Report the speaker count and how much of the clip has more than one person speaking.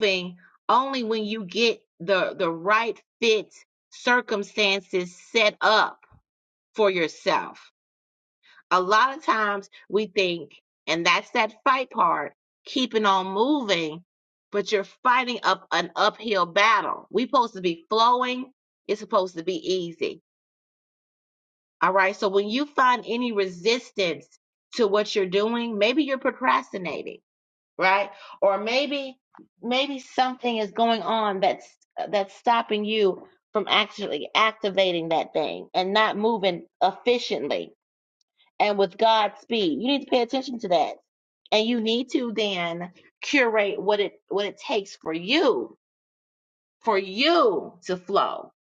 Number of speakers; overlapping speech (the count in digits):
1, no overlap